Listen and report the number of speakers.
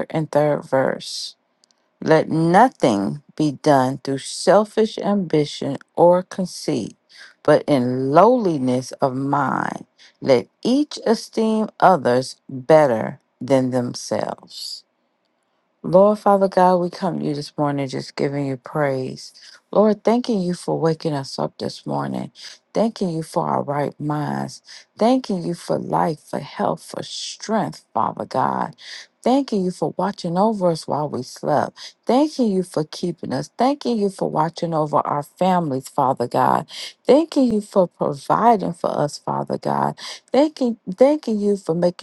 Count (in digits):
1